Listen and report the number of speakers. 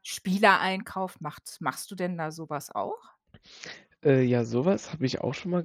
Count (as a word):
two